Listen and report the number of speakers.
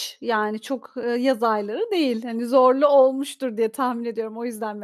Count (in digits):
1